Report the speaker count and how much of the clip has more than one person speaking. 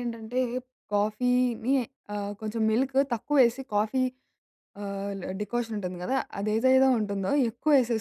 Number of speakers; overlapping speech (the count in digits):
1, no overlap